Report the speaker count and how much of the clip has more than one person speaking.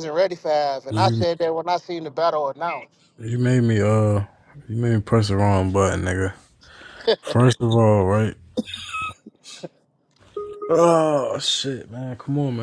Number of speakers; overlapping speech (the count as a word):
two, about 3%